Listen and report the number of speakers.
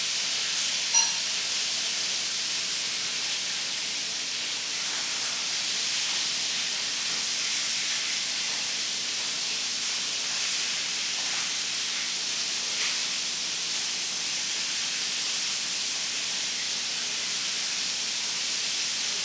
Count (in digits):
0